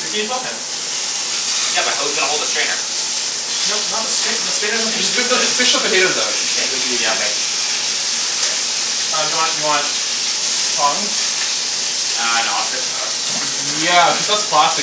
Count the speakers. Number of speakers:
three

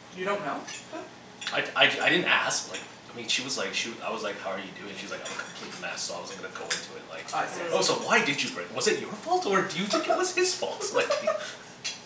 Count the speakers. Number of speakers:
two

